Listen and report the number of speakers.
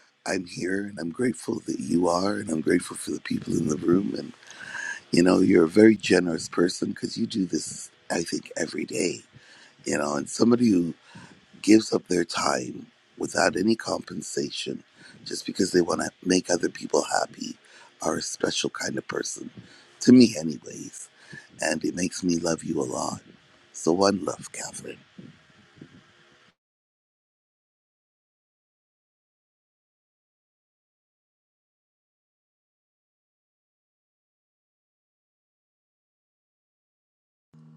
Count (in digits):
1